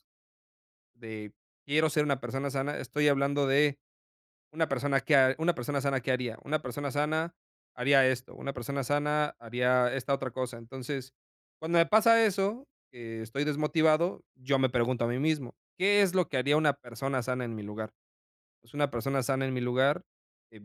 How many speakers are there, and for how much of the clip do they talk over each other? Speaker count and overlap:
1, no overlap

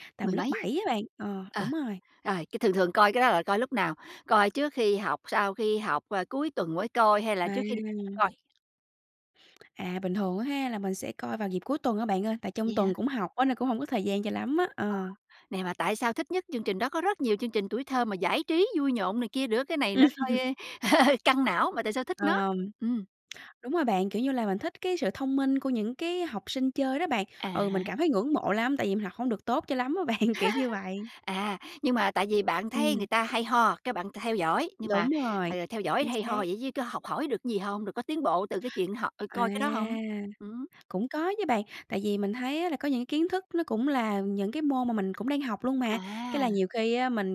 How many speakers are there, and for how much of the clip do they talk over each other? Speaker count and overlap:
2, about 8%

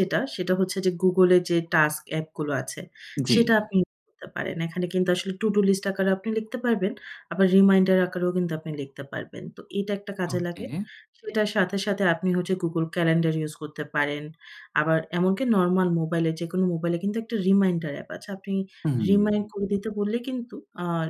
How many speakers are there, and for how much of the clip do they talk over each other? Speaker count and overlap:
2, about 4%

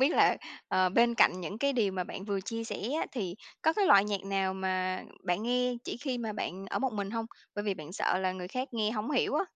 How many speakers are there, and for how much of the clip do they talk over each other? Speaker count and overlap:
1, no overlap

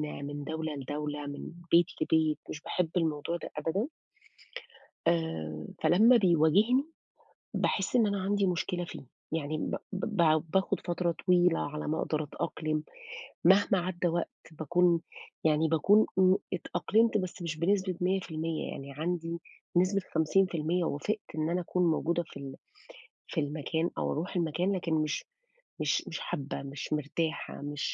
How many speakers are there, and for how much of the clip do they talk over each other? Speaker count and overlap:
1, no overlap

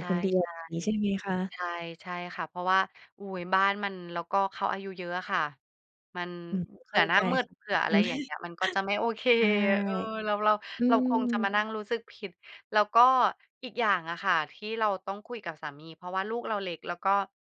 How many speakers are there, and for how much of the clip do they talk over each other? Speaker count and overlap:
2, about 13%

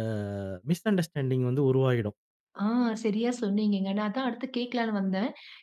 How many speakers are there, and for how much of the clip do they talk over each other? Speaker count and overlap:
2, no overlap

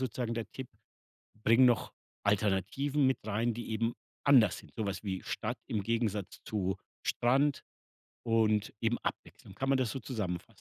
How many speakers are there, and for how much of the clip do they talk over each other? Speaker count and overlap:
1, no overlap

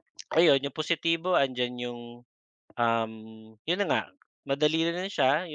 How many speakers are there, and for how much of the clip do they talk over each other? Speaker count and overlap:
1, no overlap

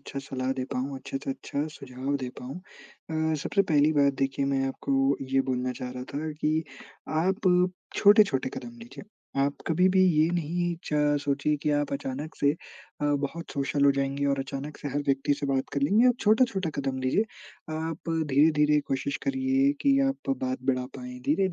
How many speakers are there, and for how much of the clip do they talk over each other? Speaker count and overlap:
1, no overlap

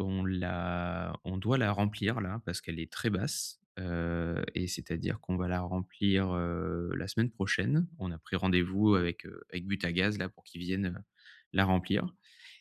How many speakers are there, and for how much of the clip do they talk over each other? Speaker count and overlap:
1, no overlap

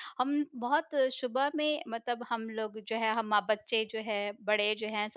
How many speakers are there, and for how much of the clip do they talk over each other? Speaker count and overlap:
1, no overlap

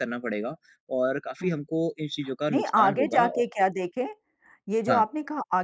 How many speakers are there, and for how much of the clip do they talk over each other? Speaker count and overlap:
2, about 21%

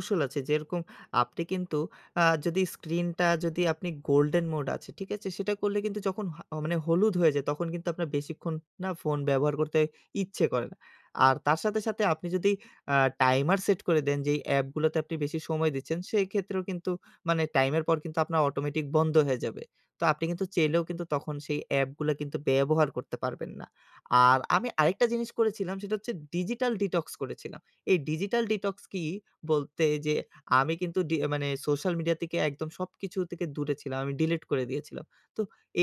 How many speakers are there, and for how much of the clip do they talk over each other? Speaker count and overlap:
1, no overlap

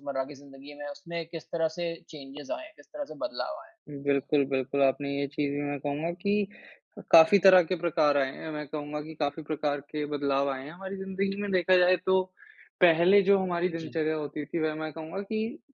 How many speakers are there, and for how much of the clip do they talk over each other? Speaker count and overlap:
2, about 1%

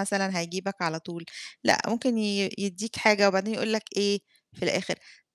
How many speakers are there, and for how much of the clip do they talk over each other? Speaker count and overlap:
1, no overlap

